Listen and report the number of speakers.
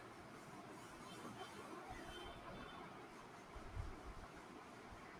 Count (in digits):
0